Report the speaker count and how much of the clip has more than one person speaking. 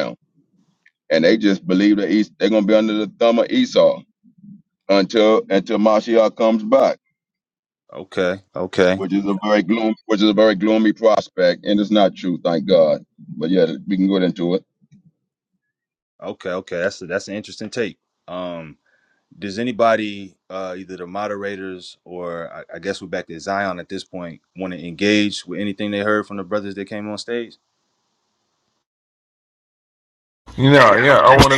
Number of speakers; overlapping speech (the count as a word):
three, under 1%